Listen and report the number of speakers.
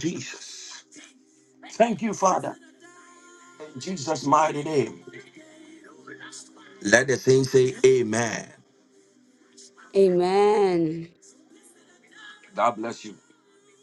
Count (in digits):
2